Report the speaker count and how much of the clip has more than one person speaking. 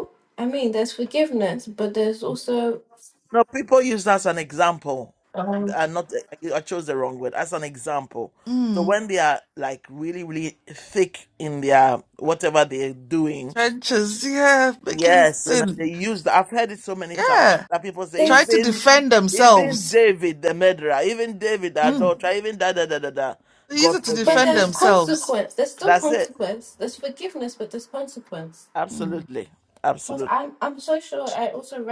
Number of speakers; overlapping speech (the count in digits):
3, about 15%